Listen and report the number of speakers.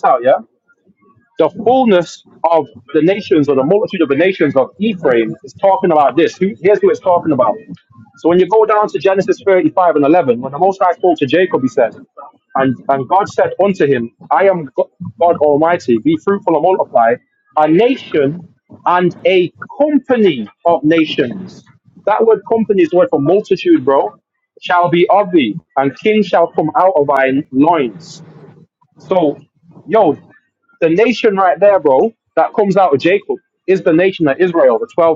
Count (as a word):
one